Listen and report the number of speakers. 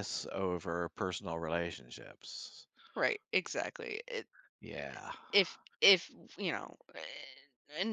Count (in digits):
2